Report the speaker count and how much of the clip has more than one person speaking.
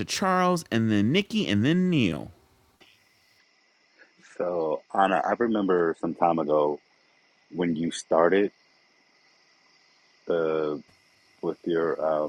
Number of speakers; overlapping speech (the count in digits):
2, no overlap